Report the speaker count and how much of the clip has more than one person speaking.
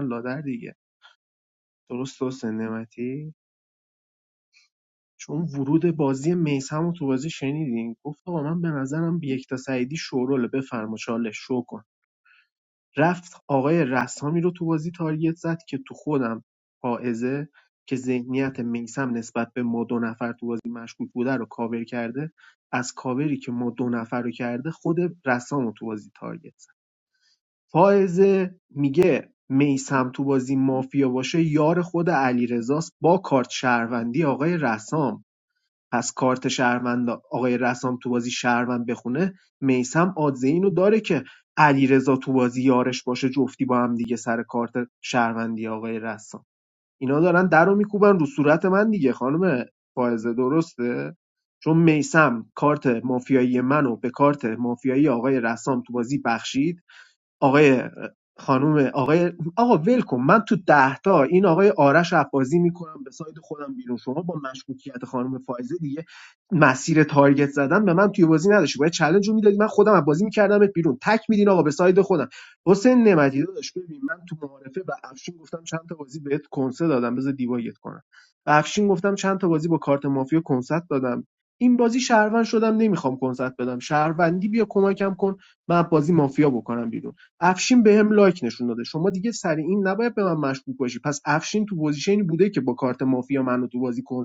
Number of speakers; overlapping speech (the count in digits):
1, no overlap